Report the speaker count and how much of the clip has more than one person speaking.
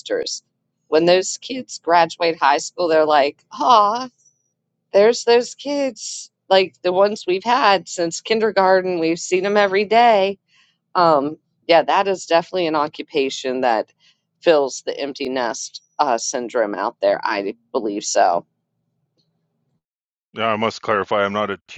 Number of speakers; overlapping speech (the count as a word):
two, no overlap